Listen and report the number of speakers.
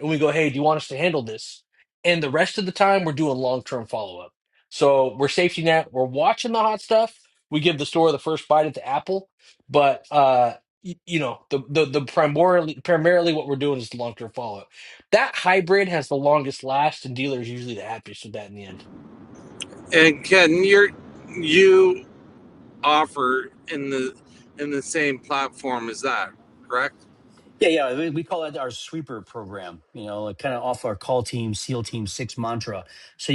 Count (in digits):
3